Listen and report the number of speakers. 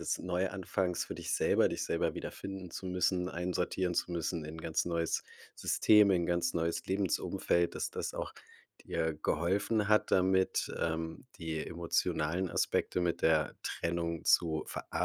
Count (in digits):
1